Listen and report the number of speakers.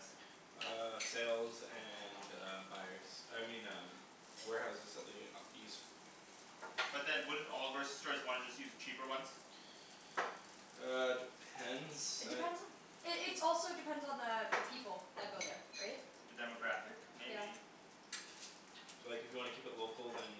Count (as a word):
three